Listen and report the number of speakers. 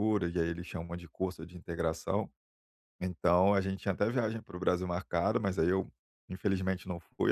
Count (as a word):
one